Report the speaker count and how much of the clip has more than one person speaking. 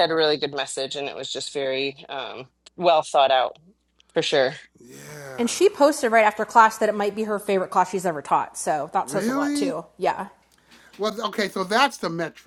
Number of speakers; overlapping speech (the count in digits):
3, about 7%